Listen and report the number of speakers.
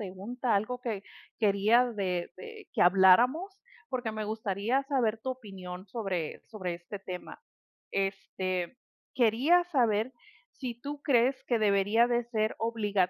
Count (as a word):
one